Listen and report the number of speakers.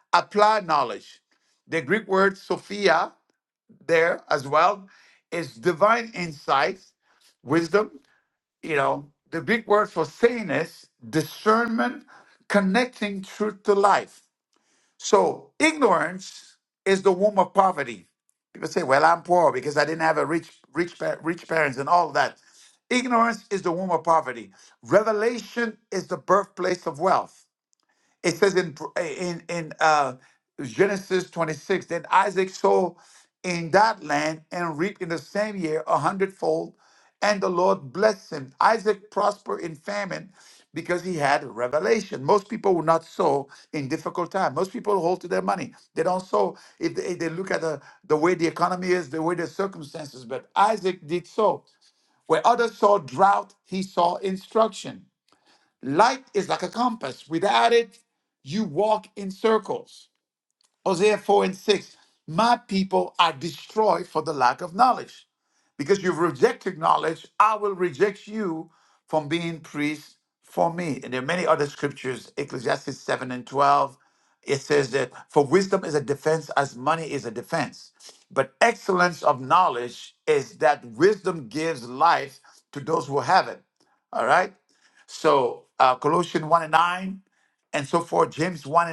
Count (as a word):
one